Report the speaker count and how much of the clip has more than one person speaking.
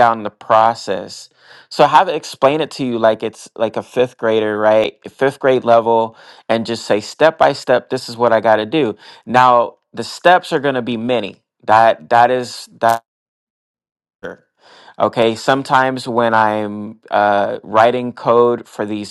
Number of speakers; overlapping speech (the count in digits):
1, no overlap